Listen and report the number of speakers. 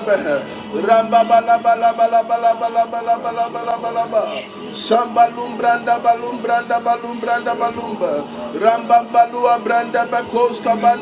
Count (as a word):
two